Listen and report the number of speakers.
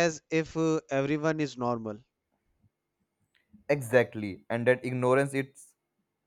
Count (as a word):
two